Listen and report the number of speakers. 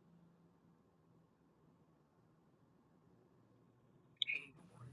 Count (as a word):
zero